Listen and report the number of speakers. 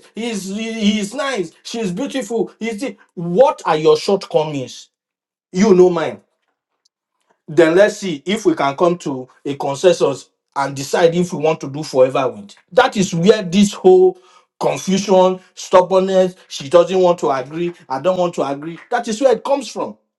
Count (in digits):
1